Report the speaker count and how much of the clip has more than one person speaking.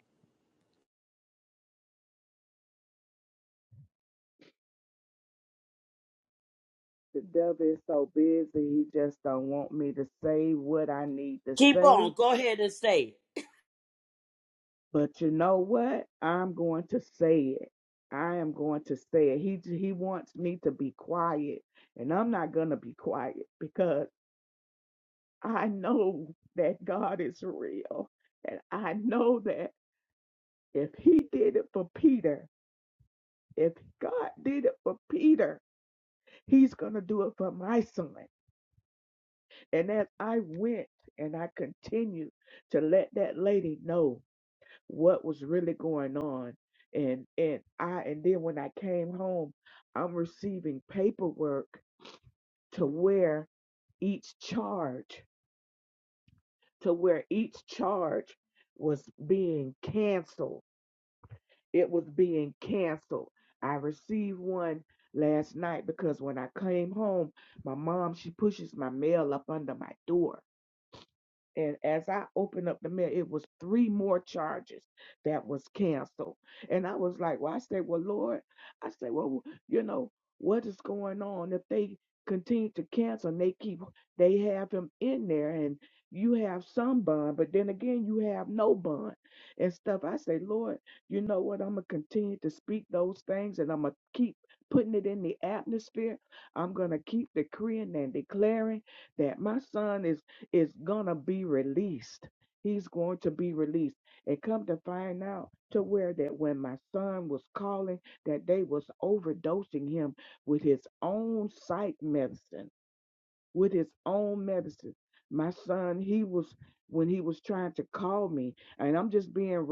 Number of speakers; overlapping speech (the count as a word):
two, under 1%